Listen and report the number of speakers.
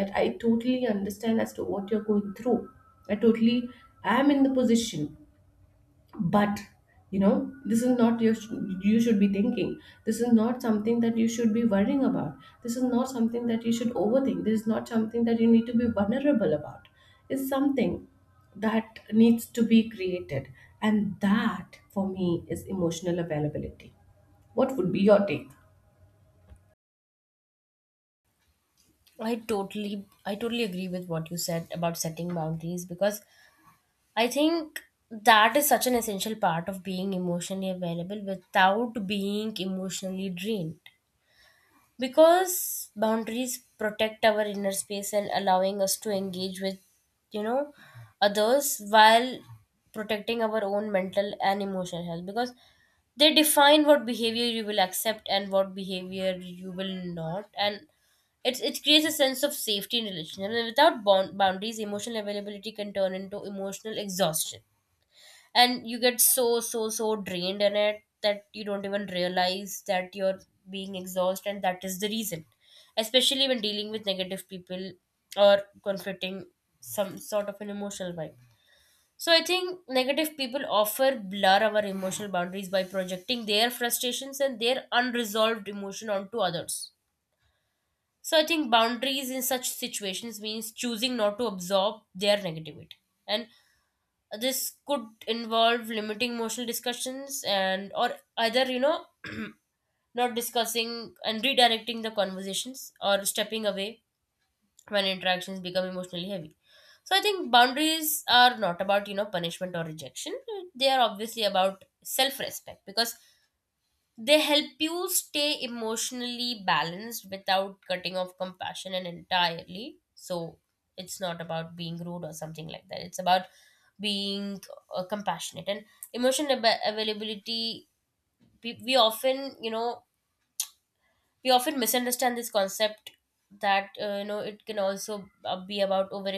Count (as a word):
two